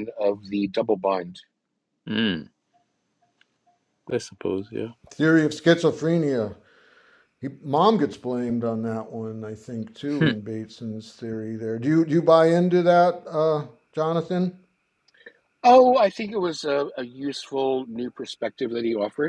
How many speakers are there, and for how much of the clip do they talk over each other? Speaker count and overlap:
3, about 1%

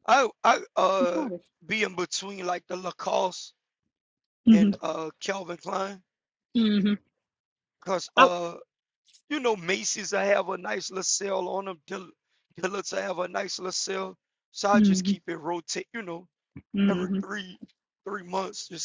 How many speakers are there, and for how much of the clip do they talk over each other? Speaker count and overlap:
2, about 8%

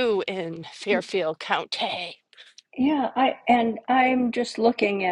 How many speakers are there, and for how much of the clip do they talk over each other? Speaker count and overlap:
2, no overlap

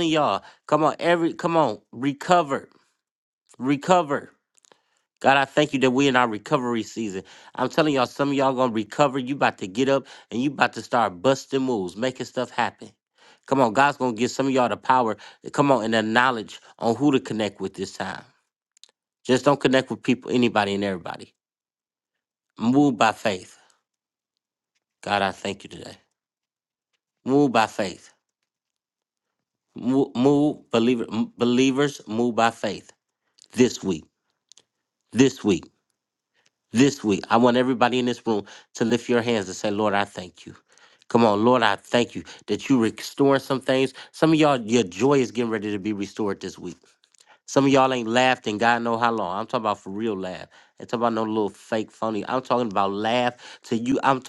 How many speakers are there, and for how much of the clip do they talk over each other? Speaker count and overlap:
1, no overlap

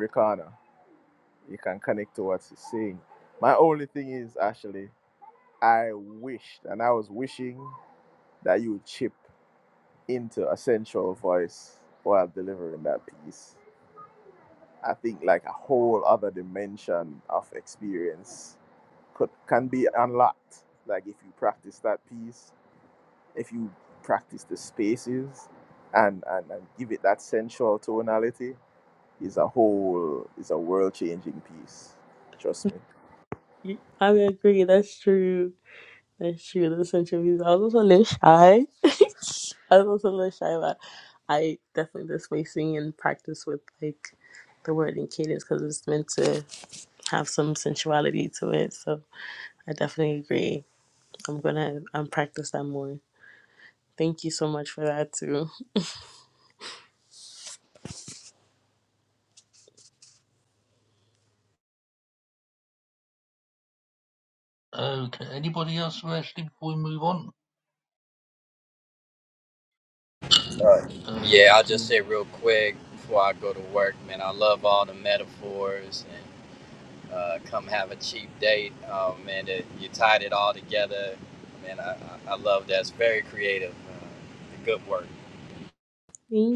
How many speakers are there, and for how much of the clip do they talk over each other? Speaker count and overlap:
4, about 1%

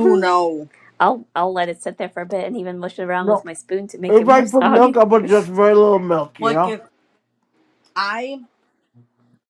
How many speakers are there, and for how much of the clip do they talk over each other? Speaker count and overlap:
3, about 15%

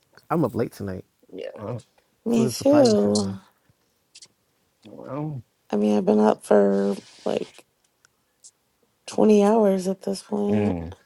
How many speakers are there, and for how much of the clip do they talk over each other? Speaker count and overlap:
3, about 11%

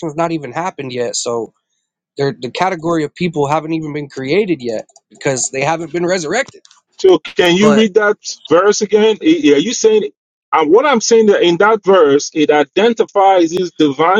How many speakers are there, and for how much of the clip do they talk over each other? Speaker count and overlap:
2, about 2%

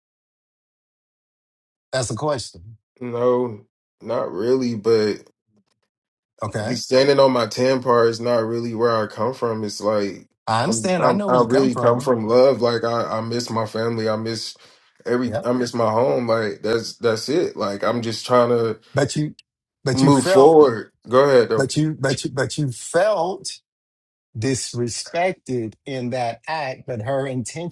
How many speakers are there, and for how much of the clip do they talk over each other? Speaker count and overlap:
2, about 9%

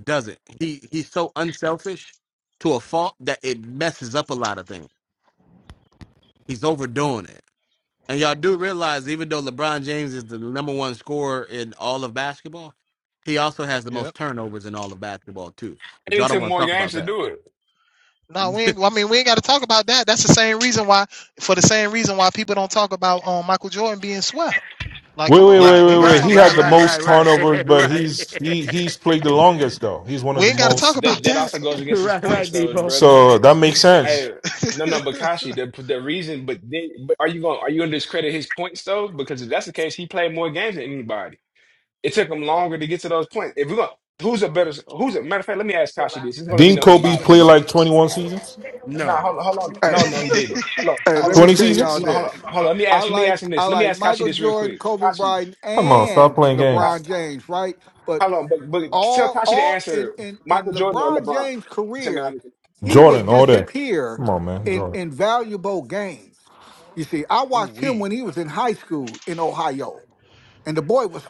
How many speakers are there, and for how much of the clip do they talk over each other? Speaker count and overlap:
5, about 25%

